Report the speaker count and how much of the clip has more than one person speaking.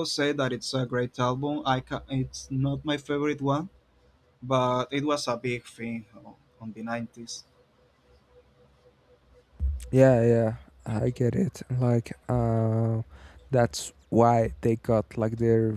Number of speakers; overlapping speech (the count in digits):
2, no overlap